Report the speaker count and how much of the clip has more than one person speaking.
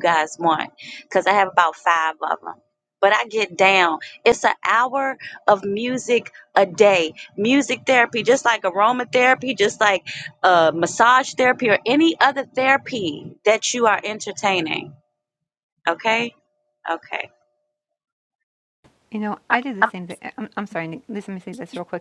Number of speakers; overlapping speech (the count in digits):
2, no overlap